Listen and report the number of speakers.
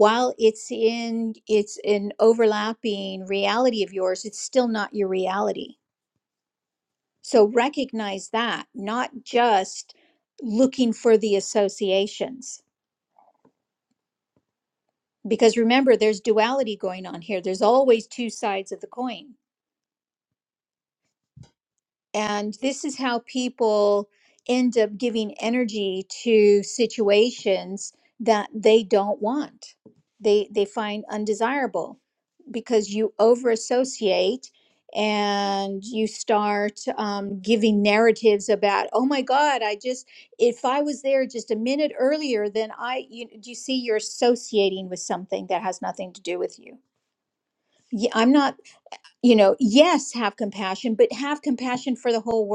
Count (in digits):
1